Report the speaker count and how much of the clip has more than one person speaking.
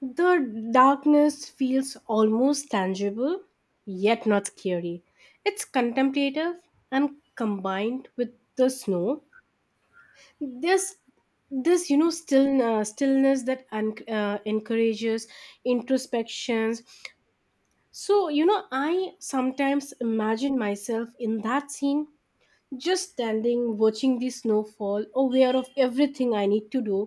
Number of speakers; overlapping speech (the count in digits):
1, no overlap